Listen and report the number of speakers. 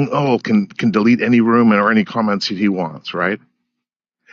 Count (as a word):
one